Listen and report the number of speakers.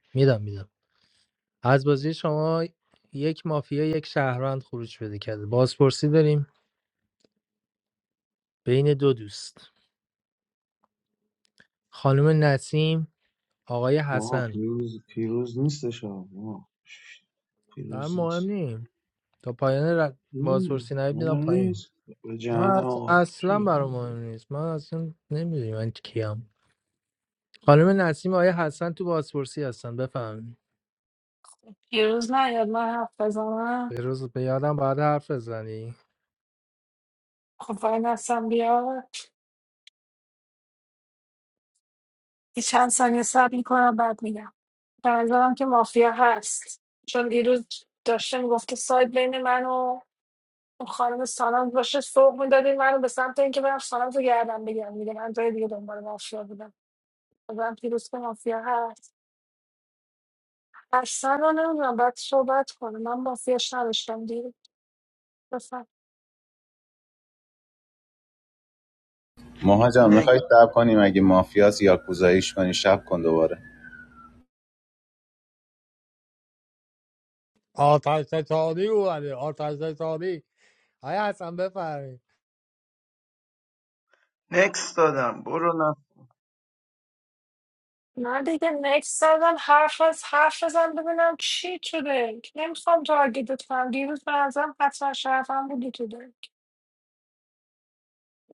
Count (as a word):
five